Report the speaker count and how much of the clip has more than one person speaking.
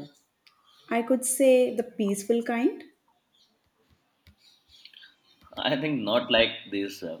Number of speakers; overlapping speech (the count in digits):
2, no overlap